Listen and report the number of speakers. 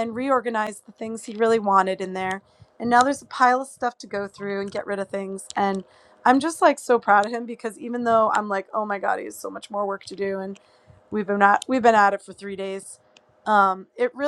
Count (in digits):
1